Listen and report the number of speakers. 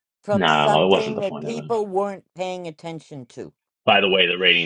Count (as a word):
two